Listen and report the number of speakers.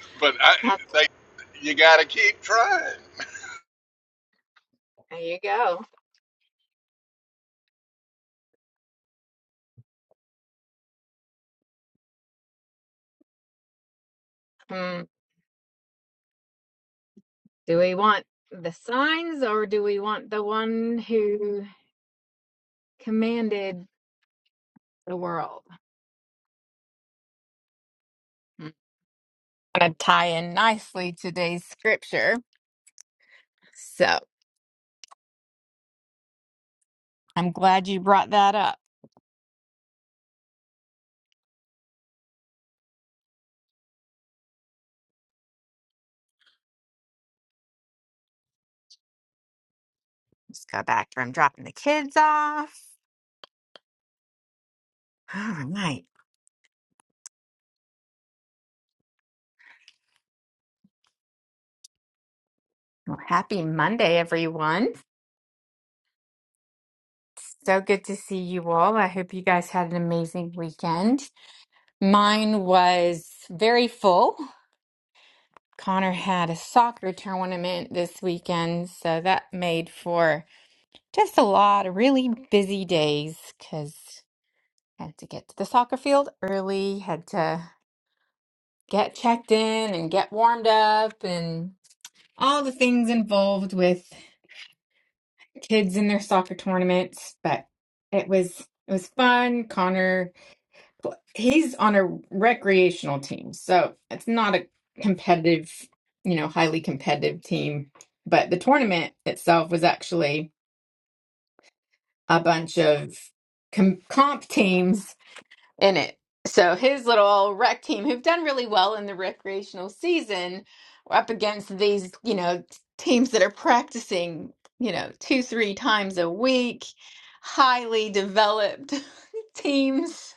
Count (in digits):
2